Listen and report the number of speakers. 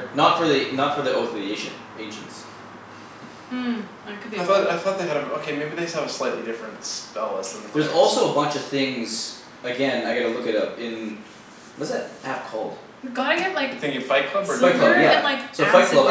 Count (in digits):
3